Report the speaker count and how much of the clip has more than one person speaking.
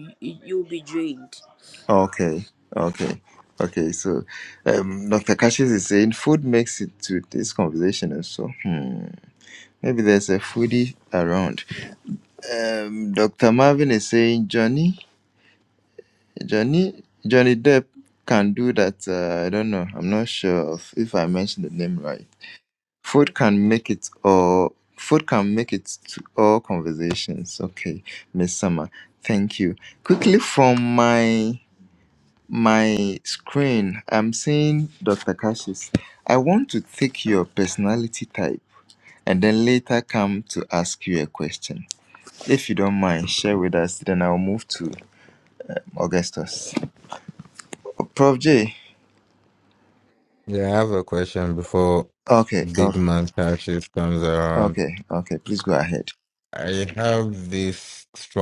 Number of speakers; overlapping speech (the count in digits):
3, about 1%